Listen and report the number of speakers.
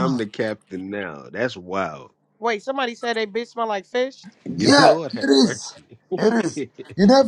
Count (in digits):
3